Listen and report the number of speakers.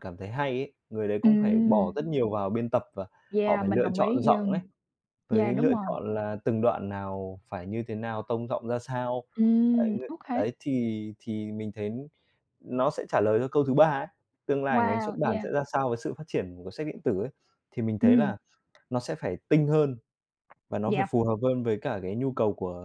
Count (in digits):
2